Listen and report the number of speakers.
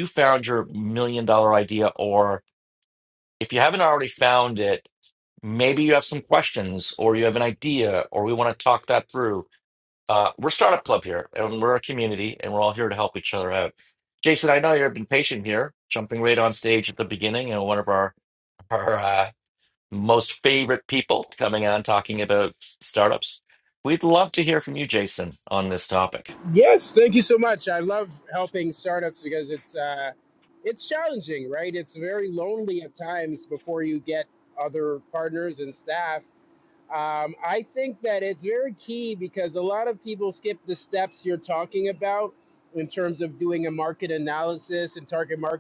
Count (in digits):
2